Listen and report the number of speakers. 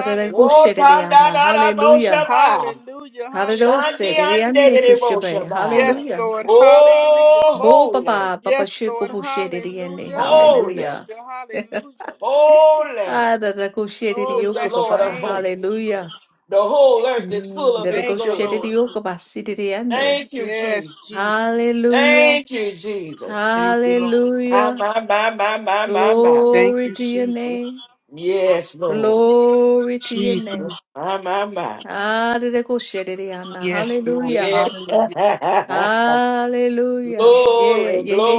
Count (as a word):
three